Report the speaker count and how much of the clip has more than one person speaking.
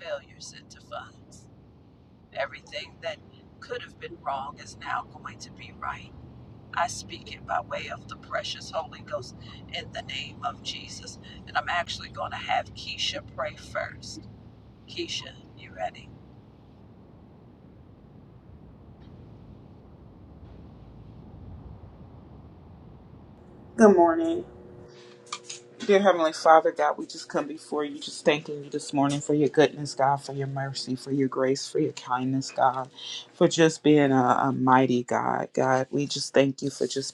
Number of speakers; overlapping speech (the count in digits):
2, no overlap